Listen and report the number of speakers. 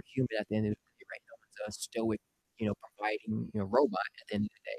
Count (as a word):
one